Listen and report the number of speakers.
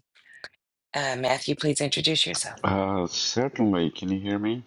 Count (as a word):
two